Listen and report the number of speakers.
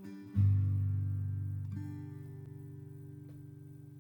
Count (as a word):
zero